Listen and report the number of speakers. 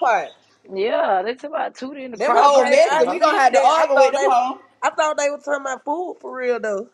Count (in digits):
3